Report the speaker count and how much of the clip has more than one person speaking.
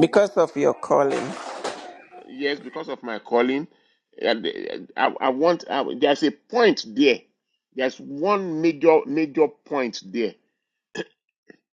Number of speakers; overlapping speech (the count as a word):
two, no overlap